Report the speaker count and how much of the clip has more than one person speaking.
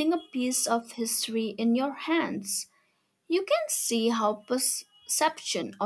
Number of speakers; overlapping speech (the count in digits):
1, no overlap